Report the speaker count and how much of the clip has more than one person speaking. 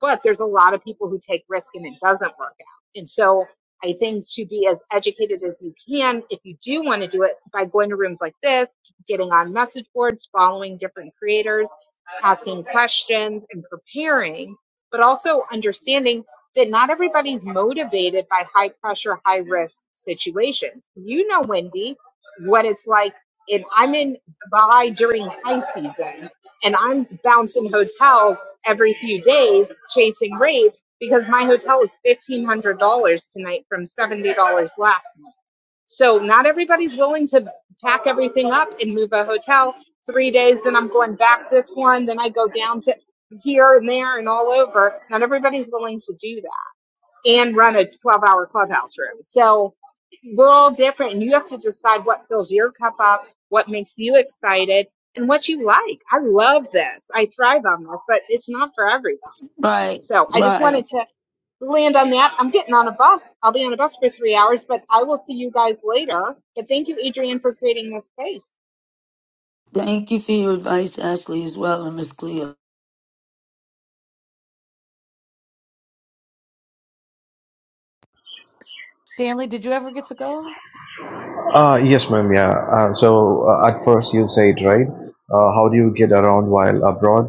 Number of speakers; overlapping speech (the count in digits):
4, about 1%